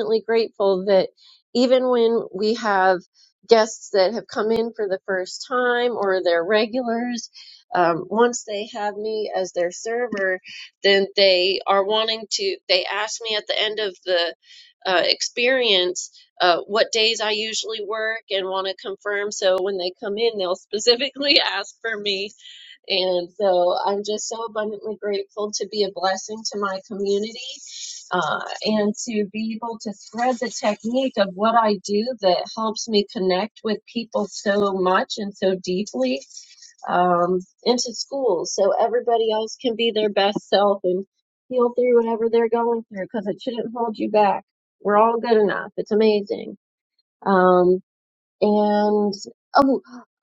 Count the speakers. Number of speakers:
1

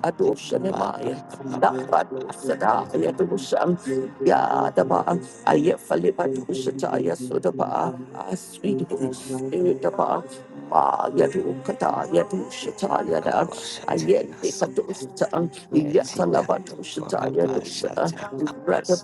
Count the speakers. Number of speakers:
3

